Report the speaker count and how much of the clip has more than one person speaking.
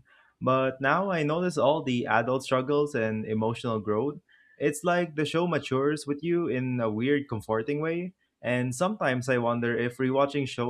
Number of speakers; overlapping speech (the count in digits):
1, no overlap